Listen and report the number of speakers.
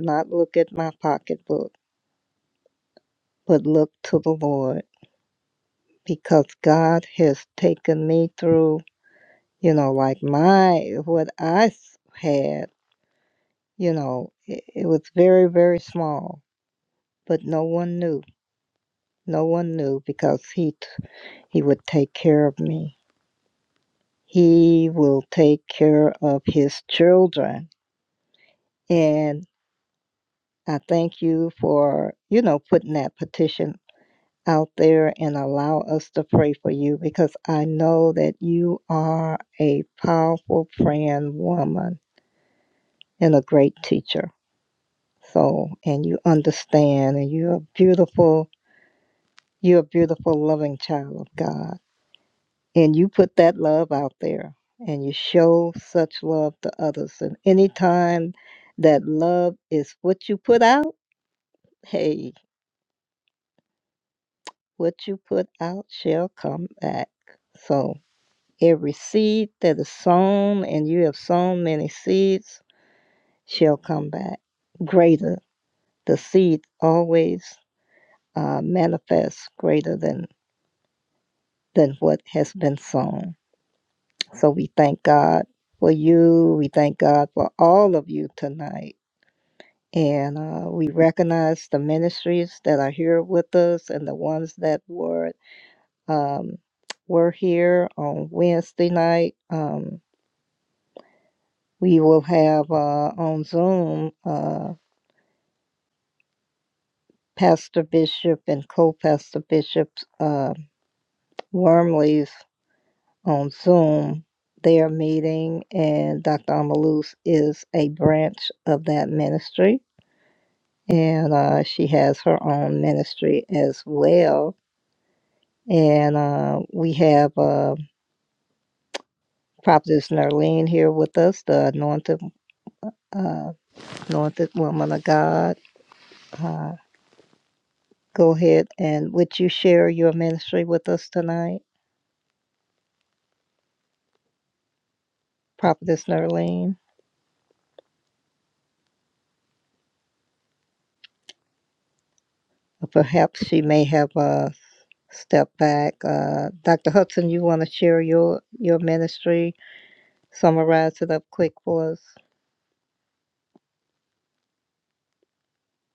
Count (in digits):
1